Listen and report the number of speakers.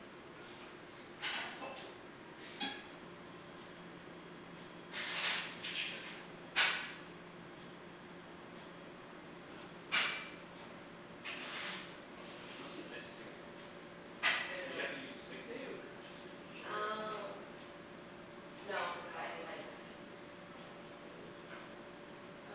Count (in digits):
2